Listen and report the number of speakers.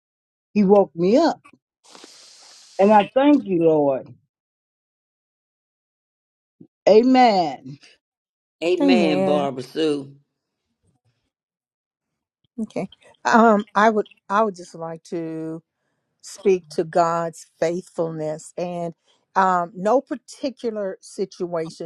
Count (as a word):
three